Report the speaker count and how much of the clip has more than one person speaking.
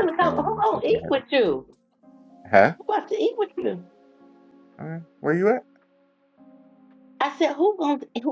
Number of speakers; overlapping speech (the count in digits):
2, about 15%